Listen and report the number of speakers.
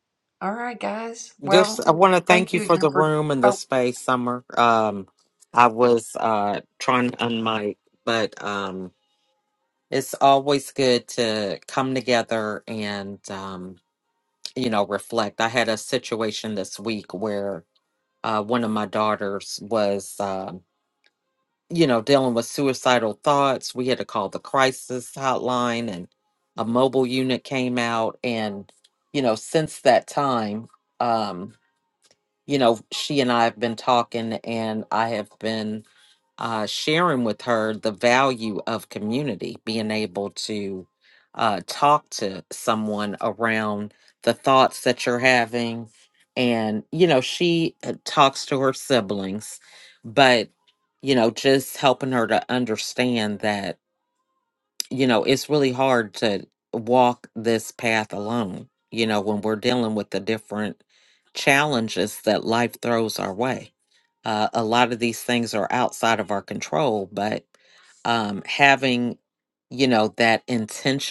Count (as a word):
two